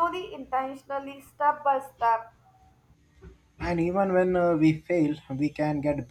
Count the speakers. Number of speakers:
2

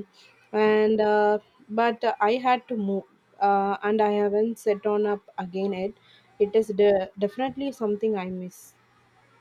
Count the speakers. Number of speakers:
1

